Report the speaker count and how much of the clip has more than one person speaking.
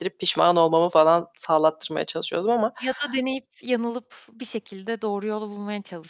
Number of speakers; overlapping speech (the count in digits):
2, no overlap